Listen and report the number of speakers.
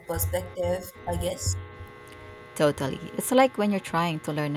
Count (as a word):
two